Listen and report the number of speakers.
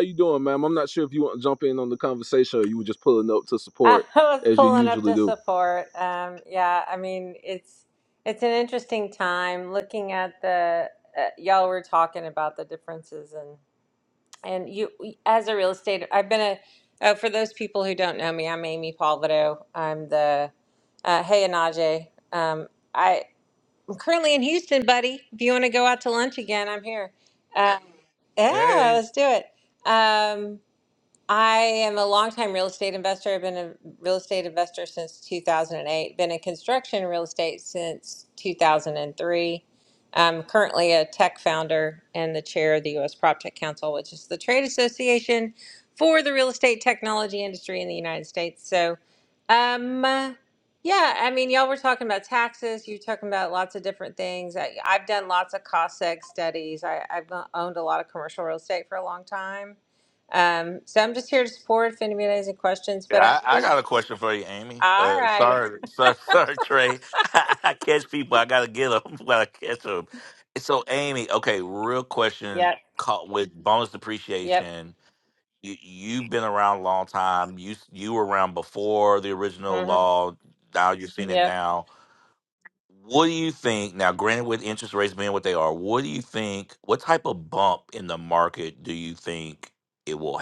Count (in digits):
3